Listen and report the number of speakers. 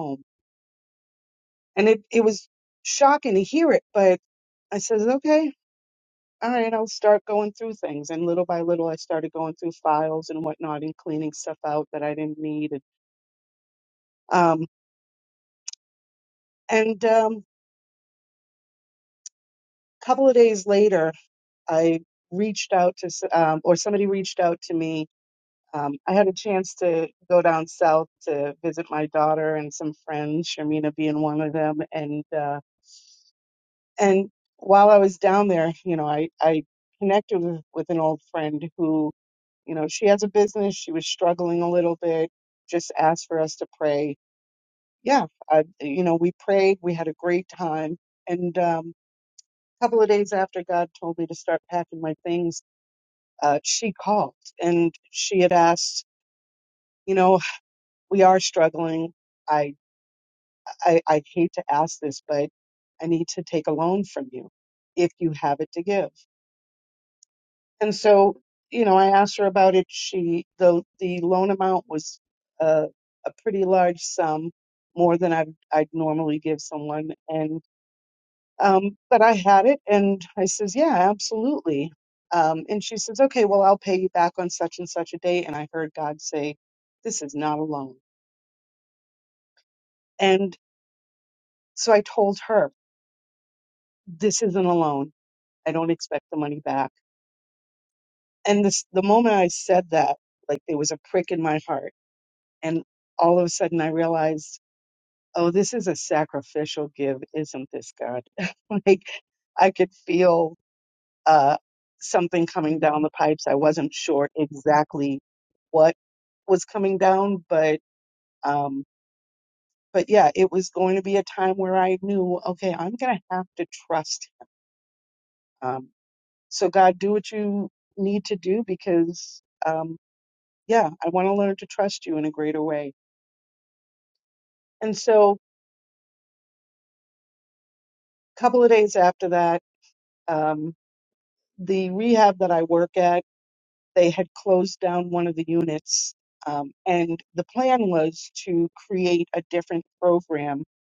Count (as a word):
one